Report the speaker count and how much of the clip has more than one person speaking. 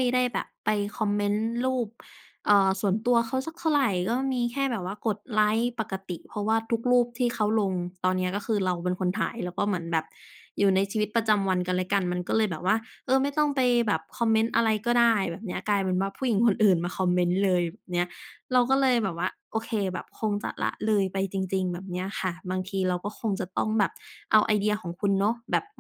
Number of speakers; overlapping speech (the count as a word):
one, no overlap